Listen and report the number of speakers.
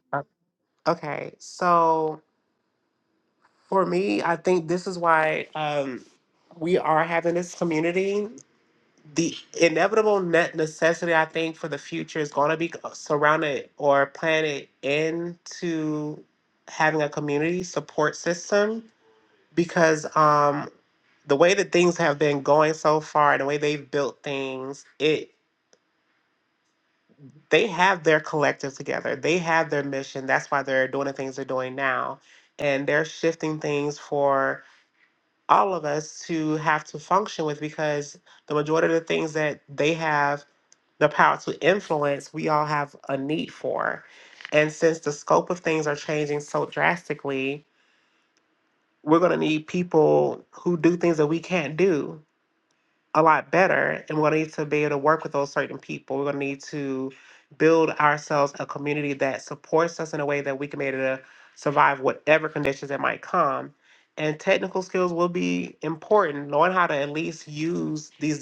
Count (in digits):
1